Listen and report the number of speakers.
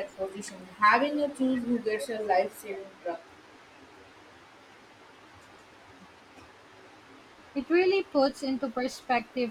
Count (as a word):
two